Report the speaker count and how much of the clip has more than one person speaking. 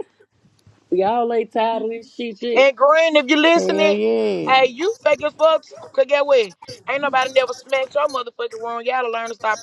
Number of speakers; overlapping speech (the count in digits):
3, about 6%